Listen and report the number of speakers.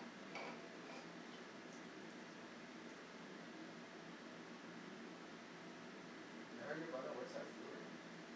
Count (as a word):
one